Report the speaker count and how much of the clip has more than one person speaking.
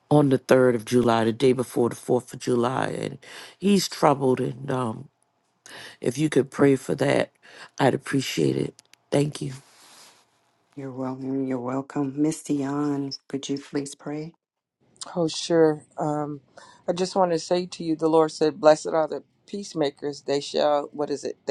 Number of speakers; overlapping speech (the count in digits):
3, no overlap